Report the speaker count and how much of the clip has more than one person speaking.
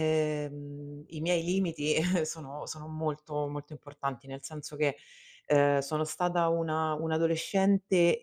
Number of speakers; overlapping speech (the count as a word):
one, no overlap